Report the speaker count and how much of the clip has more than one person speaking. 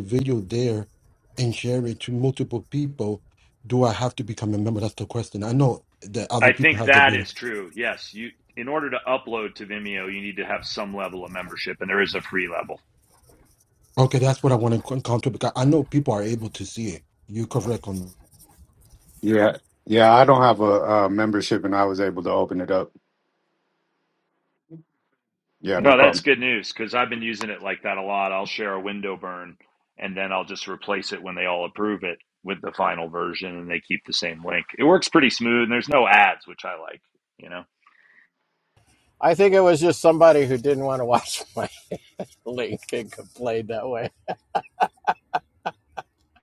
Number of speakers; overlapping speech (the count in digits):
4, about 3%